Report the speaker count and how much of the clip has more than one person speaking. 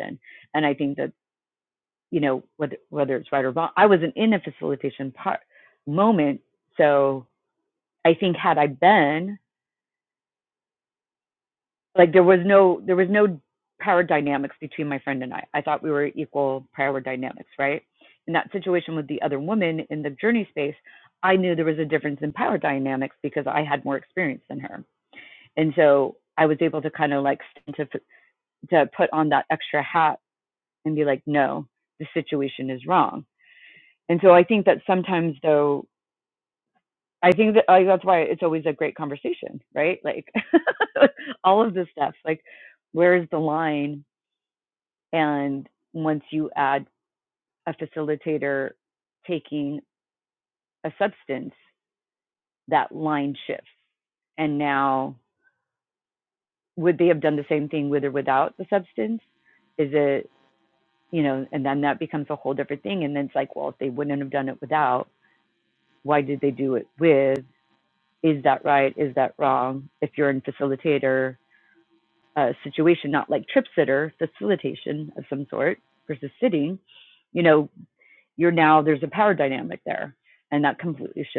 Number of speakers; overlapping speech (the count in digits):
1, no overlap